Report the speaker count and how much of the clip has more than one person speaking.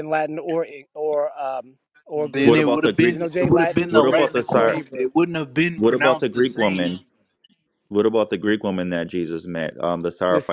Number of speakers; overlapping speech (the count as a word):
three, about 40%